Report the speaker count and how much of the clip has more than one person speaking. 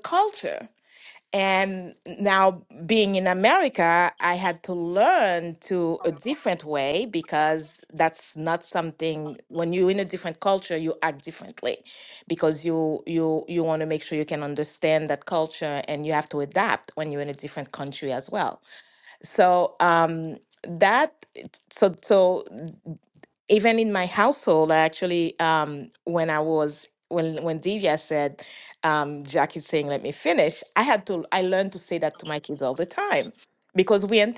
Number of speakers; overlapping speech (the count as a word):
one, no overlap